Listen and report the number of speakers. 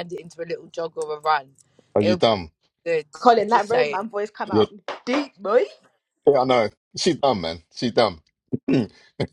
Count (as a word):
three